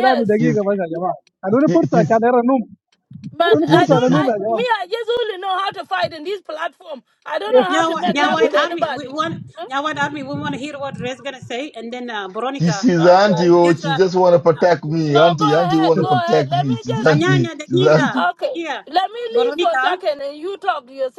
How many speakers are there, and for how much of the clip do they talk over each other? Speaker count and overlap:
4, about 44%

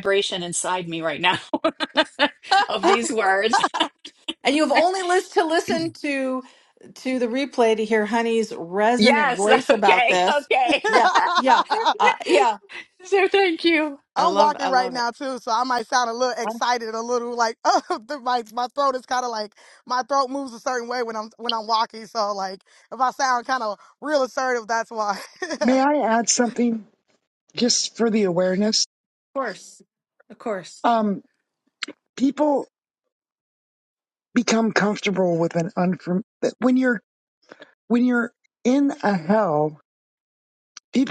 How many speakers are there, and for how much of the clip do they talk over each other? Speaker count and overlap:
4, about 5%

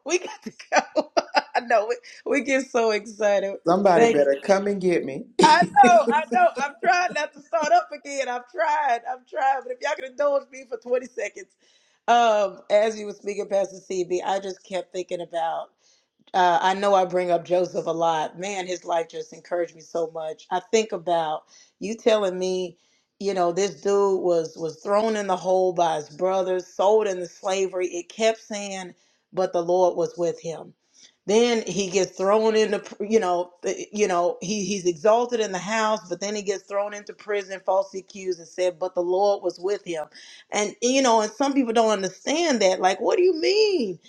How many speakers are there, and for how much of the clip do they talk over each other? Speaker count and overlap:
2, about 1%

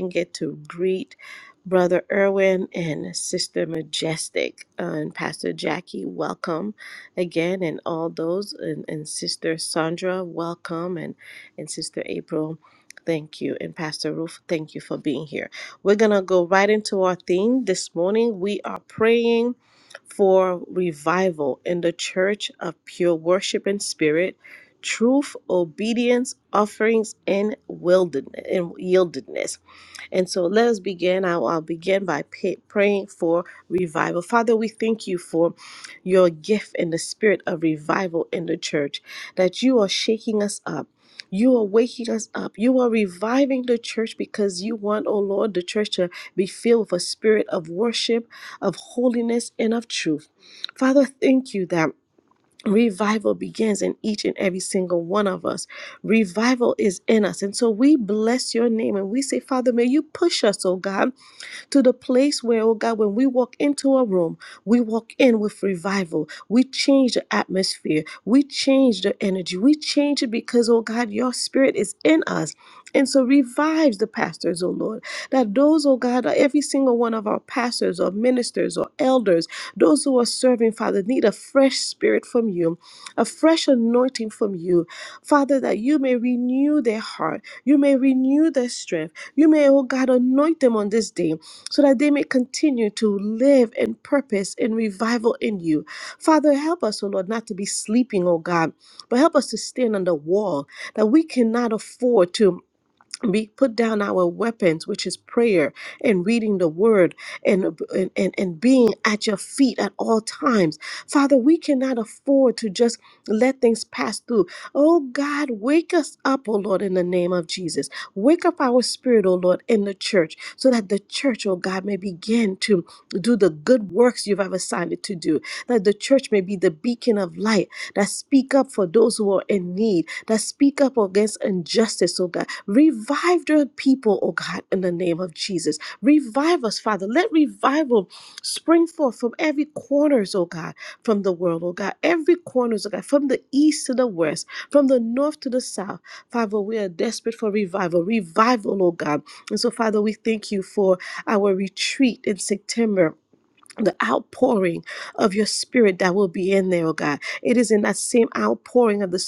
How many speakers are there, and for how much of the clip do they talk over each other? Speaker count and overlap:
1, no overlap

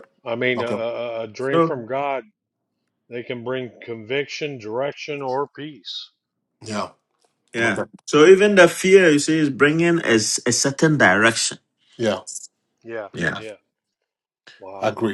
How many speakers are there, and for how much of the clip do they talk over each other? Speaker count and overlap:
3, about 7%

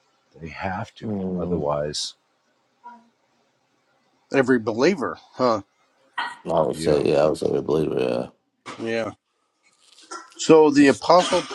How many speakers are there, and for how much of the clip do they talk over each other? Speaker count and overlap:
3, about 8%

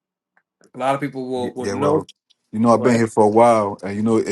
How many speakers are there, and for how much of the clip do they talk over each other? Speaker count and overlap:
2, about 20%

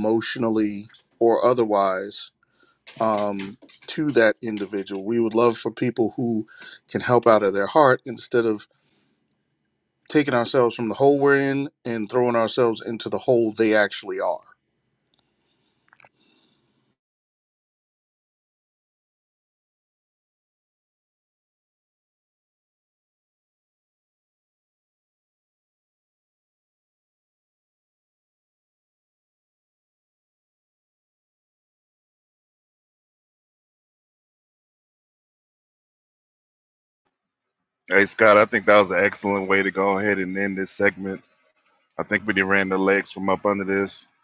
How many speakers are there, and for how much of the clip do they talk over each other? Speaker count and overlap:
2, no overlap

